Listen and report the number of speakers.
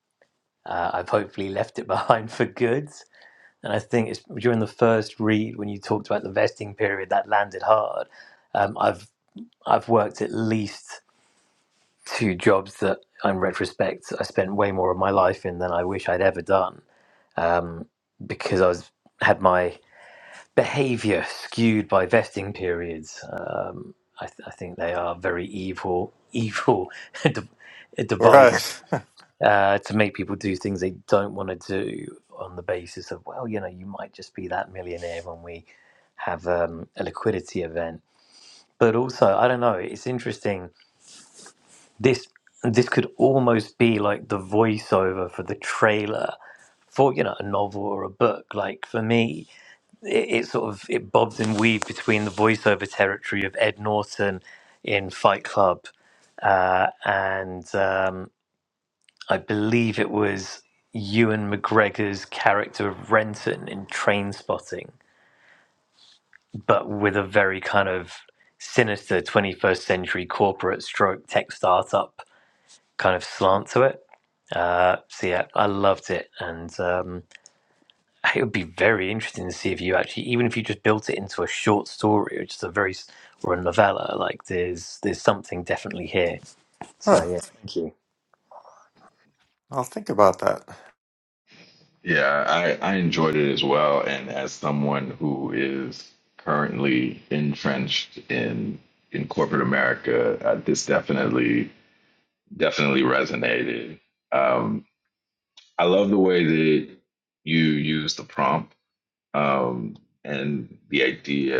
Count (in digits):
3